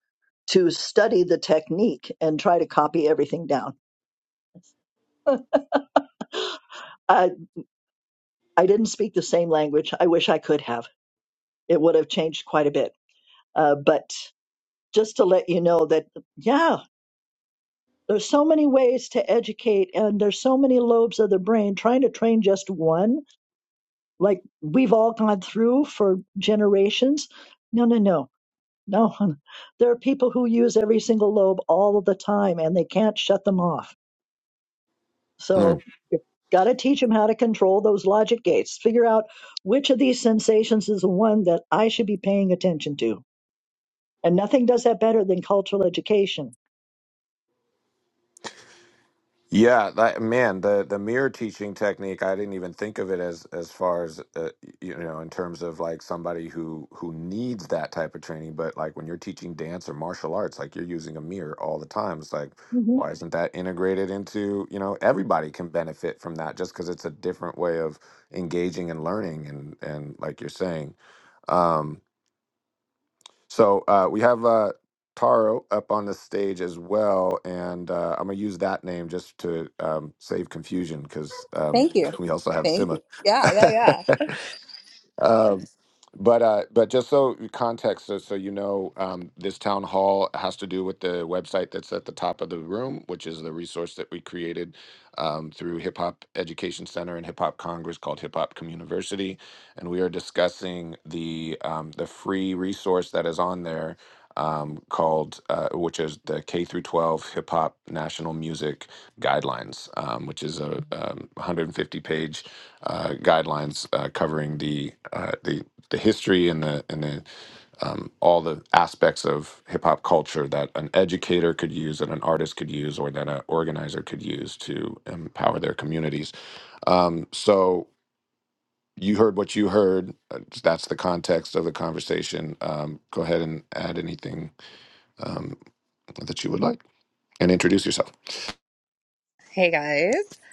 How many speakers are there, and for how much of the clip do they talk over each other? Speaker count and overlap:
three, about 1%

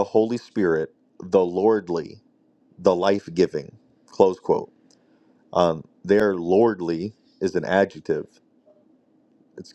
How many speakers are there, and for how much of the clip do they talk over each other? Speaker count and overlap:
one, no overlap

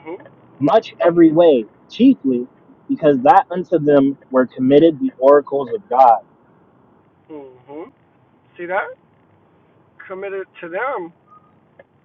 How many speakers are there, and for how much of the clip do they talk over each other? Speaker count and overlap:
two, no overlap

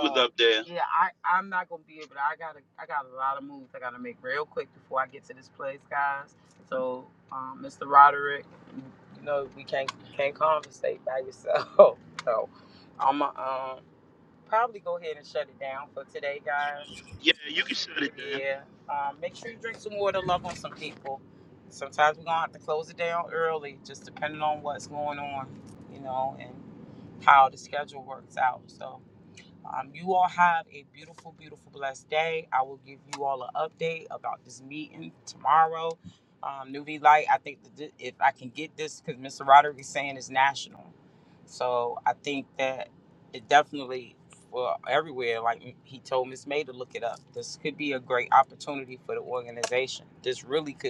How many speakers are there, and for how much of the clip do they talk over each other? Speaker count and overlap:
two, about 1%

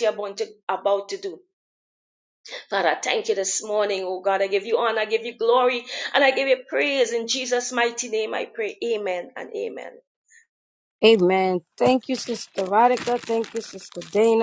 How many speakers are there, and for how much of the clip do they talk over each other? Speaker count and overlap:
two, no overlap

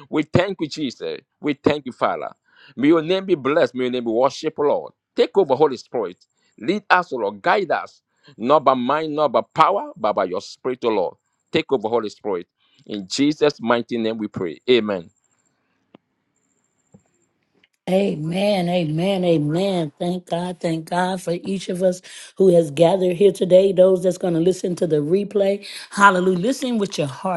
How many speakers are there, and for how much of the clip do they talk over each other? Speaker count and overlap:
two, no overlap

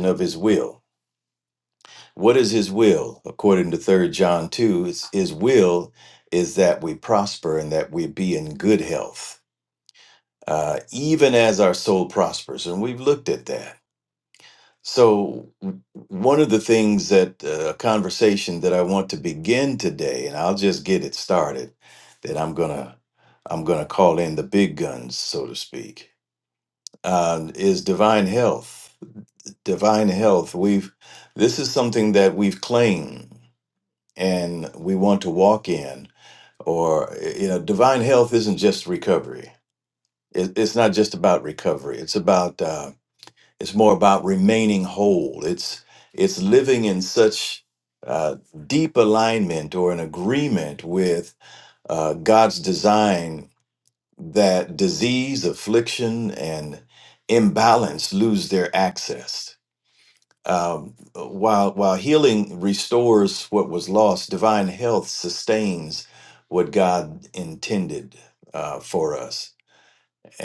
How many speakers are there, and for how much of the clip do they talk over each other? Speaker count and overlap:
one, no overlap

